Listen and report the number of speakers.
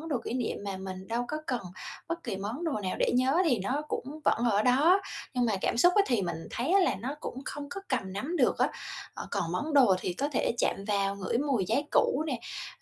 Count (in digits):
1